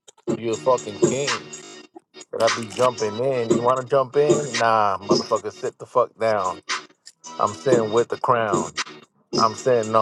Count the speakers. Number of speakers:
one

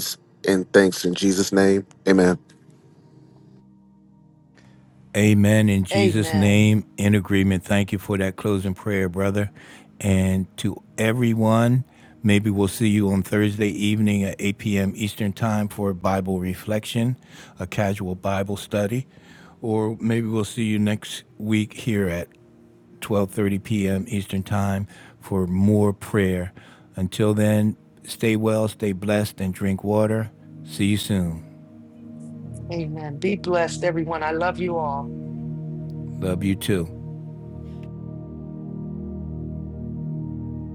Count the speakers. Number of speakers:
three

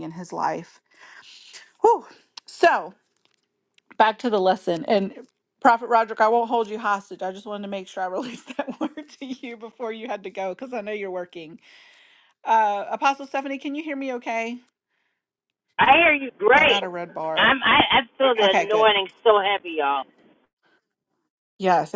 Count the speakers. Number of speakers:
two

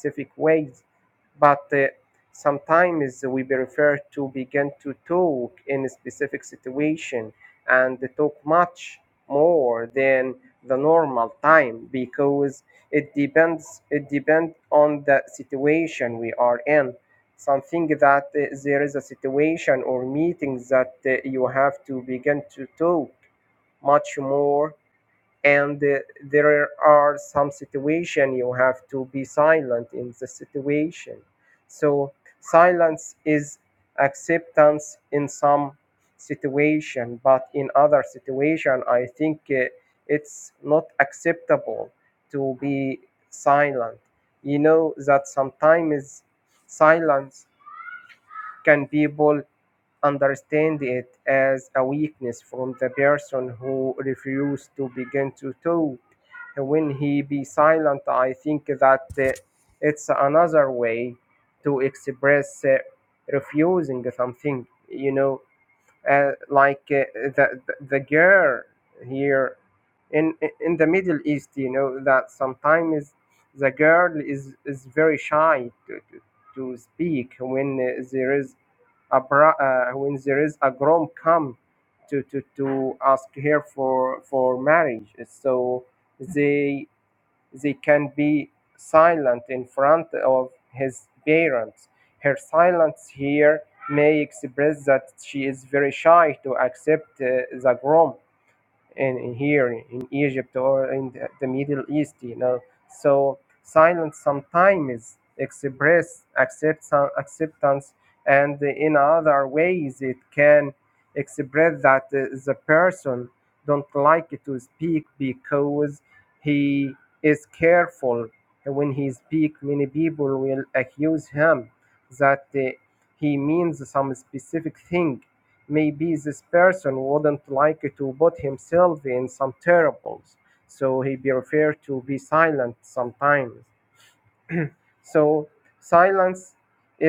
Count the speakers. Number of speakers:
one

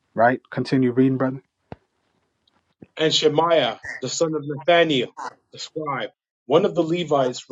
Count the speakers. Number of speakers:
two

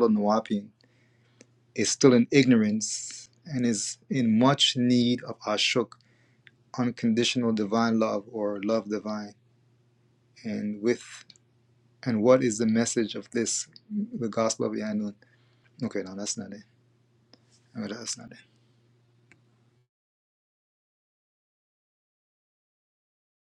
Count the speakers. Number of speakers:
one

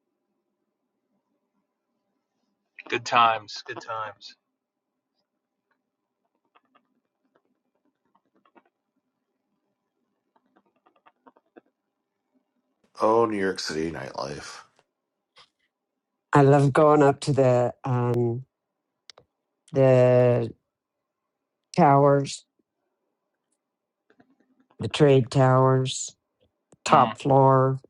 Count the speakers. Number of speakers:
three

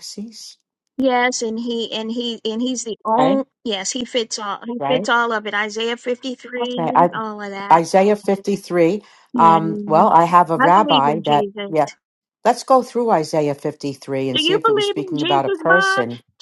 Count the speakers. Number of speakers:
two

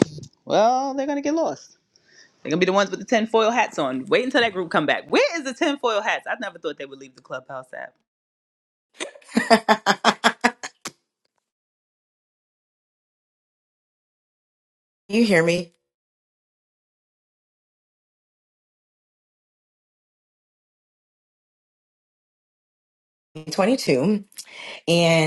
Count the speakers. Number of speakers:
two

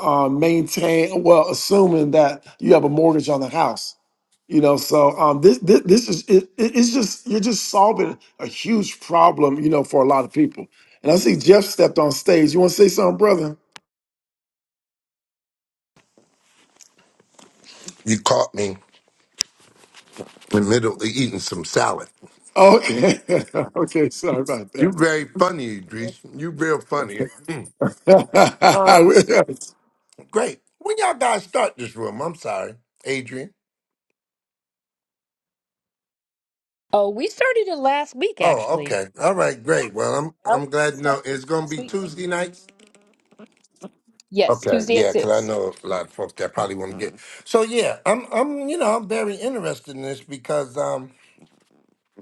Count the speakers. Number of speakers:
three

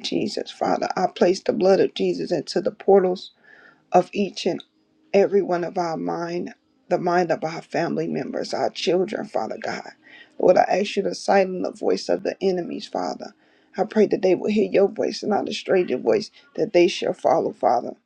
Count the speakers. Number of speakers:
one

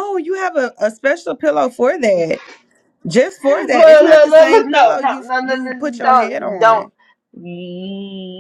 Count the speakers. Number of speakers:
two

